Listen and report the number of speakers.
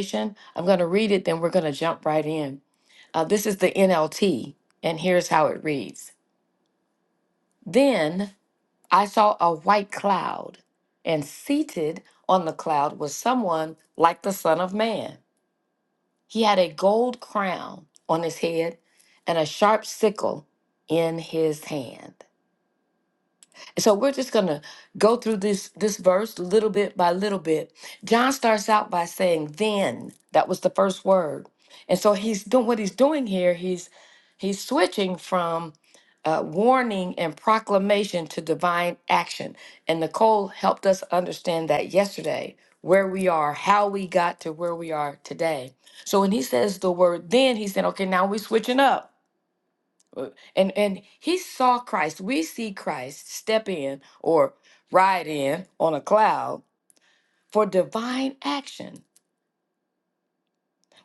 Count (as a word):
one